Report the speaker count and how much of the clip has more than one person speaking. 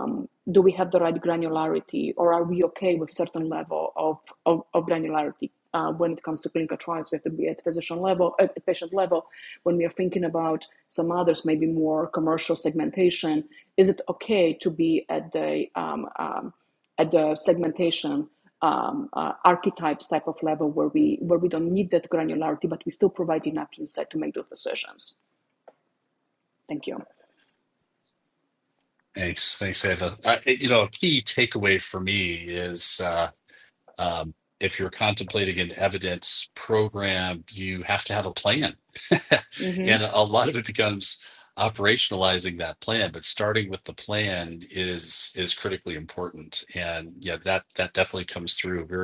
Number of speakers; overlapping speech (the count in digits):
2, under 1%